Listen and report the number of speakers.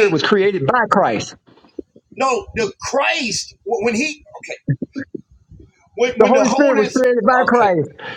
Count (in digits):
2